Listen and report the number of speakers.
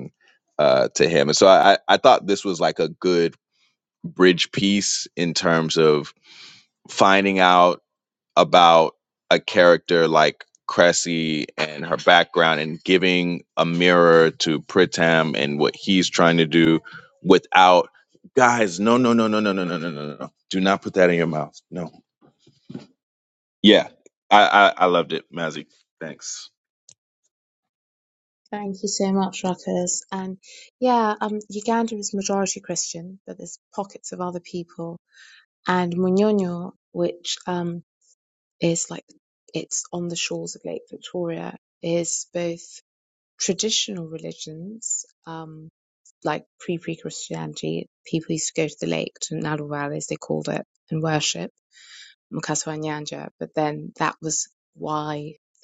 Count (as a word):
two